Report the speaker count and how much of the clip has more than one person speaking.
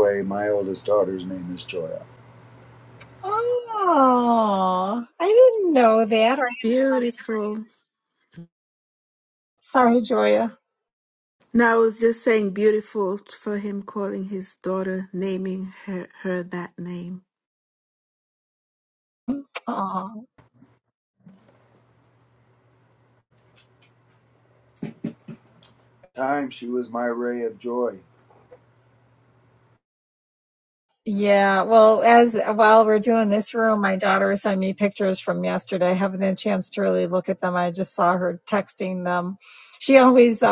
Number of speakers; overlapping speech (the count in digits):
3, no overlap